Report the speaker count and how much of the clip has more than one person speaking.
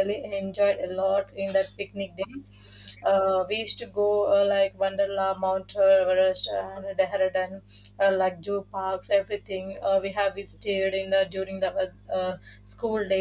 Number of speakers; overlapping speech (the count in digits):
1, no overlap